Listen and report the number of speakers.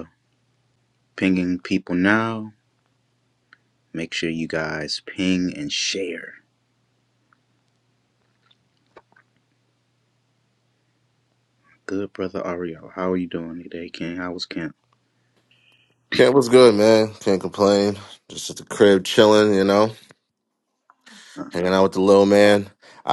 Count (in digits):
2